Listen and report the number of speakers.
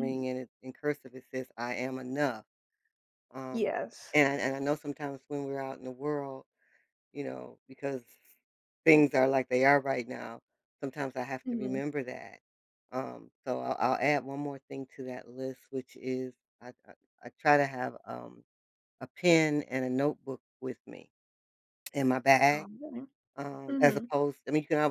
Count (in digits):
2